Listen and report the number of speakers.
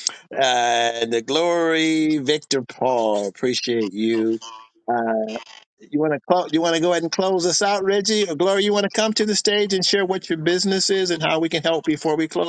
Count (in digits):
1